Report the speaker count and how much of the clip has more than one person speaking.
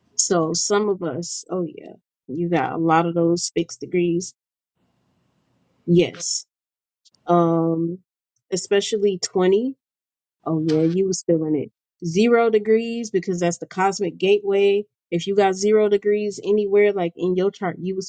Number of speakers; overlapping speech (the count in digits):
1, no overlap